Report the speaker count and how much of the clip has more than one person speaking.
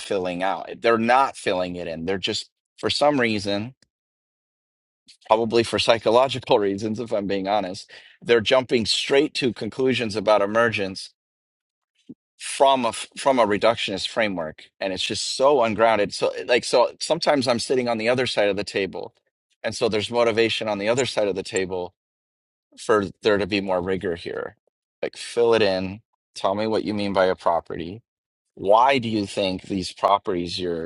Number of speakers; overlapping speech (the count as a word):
one, no overlap